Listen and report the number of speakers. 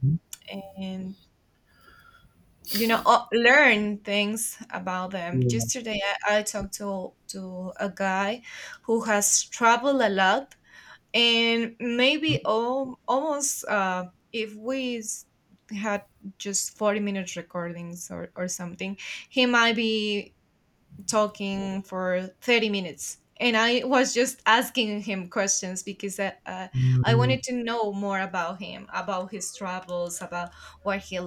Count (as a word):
two